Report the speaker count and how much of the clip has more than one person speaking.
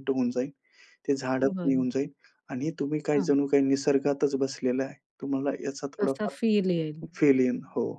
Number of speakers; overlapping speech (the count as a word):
two, about 12%